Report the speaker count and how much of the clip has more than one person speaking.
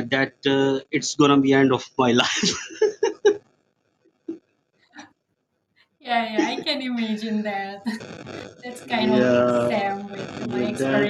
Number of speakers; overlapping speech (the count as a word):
two, about 13%